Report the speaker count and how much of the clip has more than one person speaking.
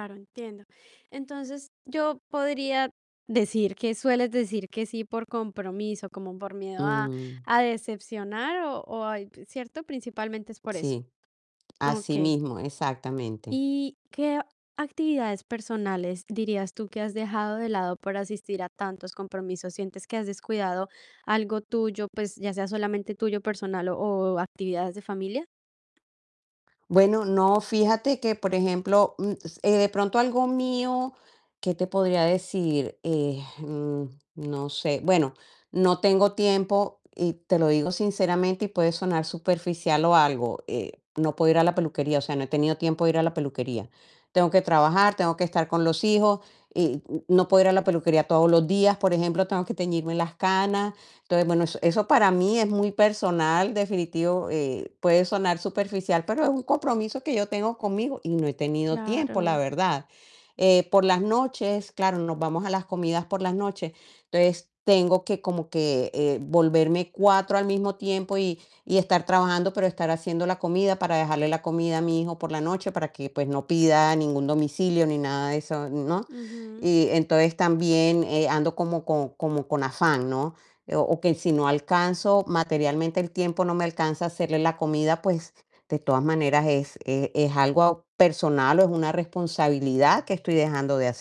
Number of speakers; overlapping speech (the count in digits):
2, about 2%